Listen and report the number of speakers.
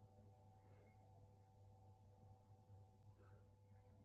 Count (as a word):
zero